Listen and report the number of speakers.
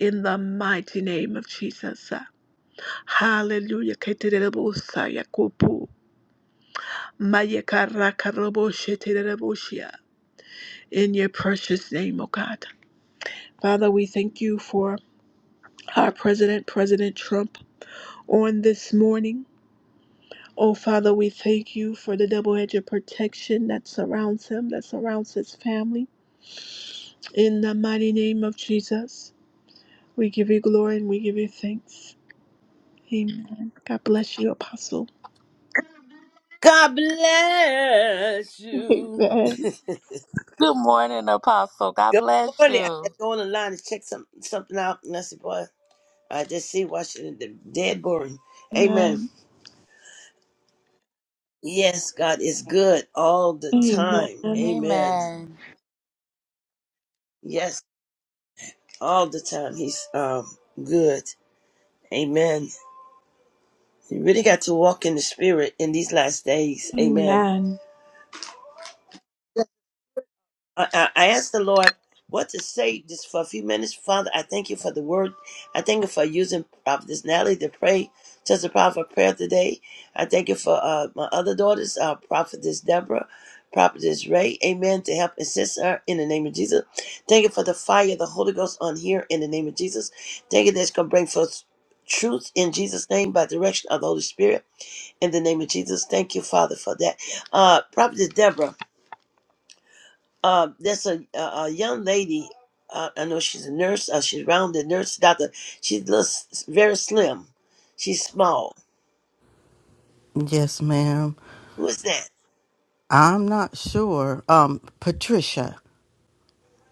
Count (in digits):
4